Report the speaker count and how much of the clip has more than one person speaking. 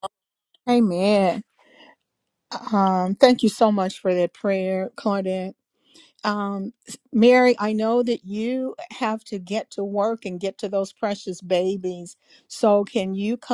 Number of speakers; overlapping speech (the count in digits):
1, no overlap